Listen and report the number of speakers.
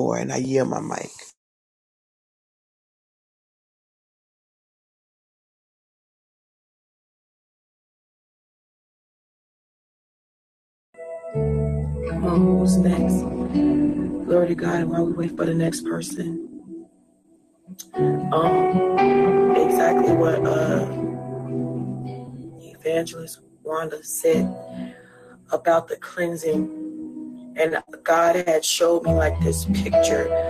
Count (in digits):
2